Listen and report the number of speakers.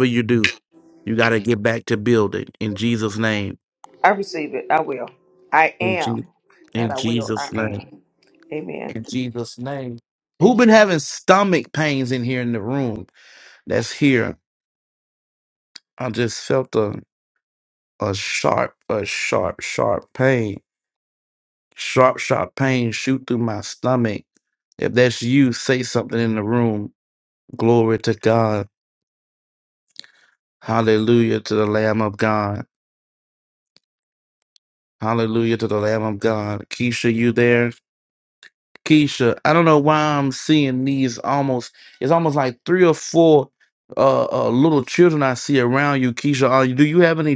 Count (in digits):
2